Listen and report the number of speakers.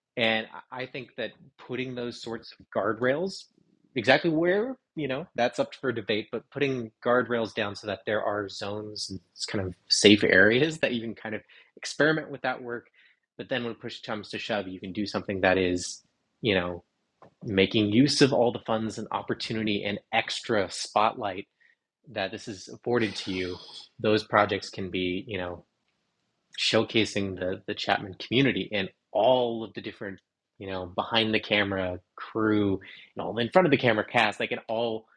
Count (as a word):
one